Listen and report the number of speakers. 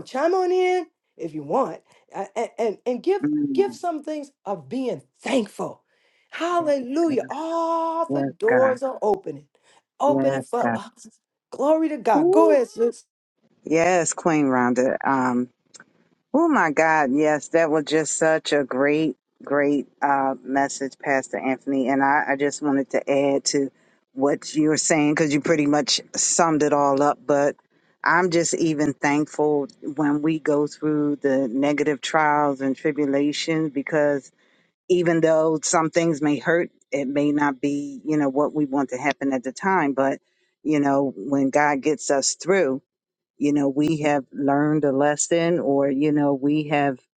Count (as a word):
two